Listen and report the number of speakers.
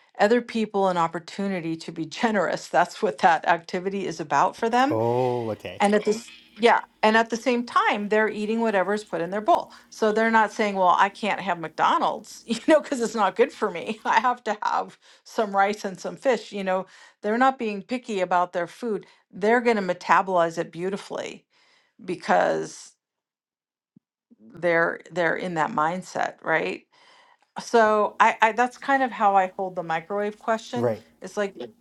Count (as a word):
two